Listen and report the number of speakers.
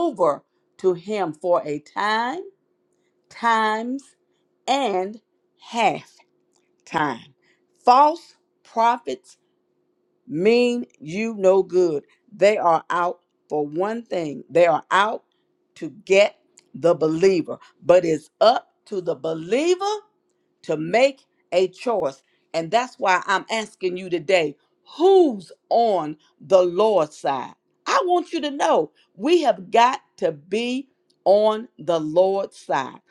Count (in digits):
1